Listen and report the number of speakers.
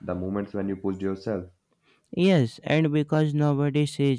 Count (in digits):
2